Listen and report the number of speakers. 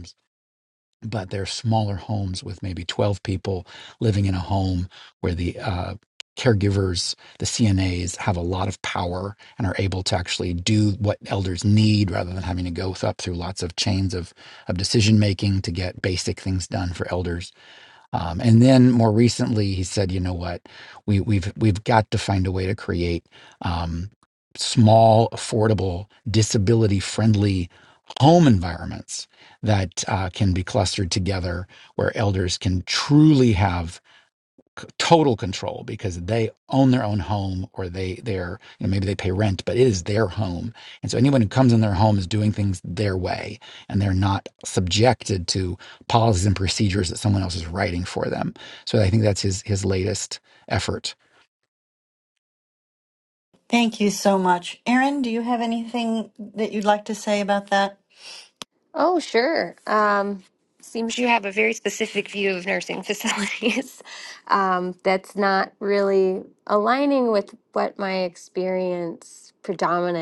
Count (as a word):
three